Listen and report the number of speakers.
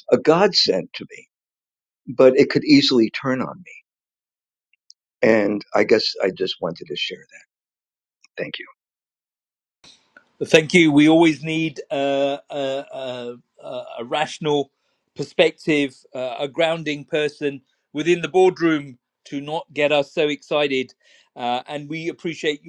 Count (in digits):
2